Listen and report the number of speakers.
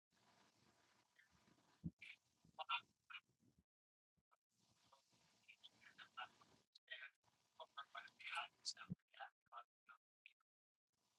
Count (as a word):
zero